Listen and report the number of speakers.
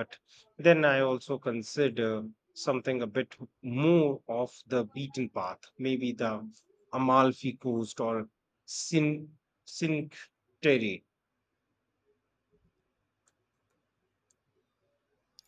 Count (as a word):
one